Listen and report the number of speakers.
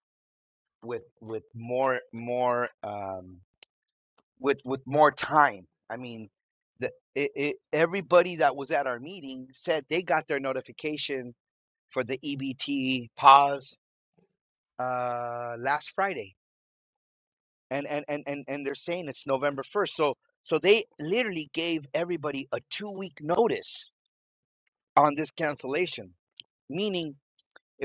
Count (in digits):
1